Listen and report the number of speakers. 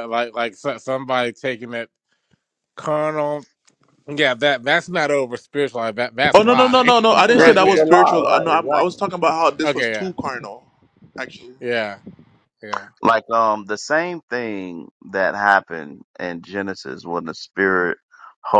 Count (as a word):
three